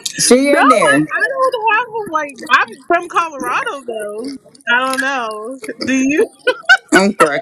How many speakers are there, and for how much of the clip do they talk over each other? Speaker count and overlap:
two, about 10%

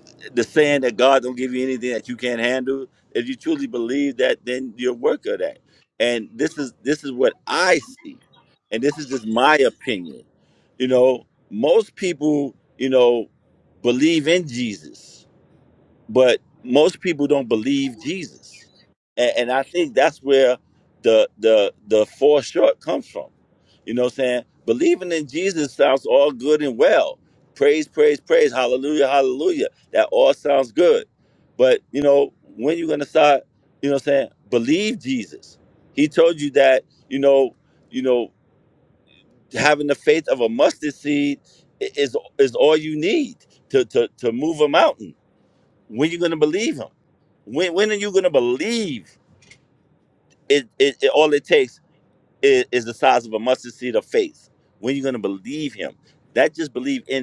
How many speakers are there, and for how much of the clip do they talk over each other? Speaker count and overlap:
one, no overlap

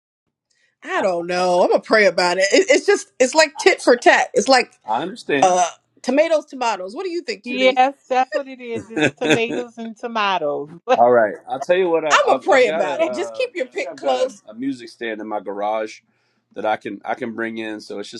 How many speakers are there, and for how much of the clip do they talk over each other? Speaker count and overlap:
three, about 15%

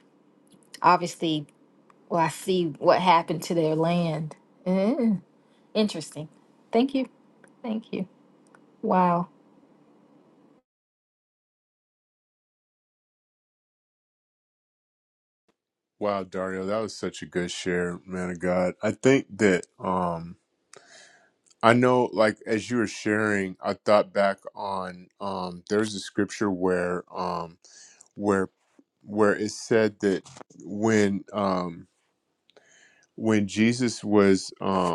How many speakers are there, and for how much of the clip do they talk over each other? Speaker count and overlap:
two, no overlap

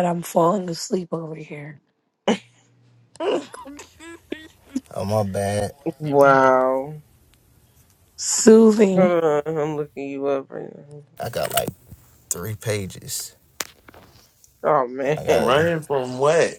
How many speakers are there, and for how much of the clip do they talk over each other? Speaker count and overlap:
four, about 3%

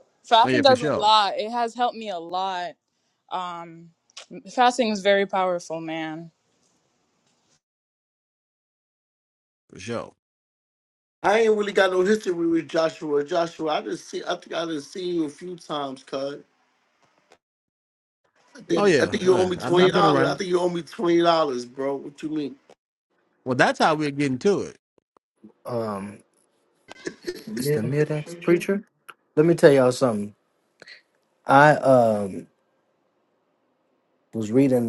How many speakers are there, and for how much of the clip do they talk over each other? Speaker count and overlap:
four, about 6%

